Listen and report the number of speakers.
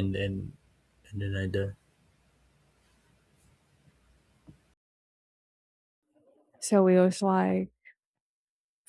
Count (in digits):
2